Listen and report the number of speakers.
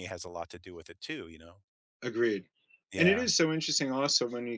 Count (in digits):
2